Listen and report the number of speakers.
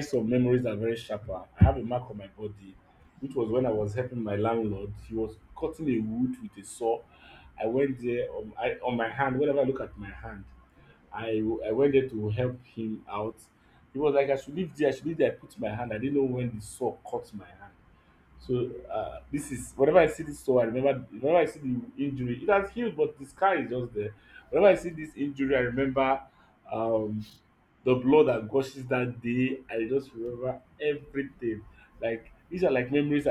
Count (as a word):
one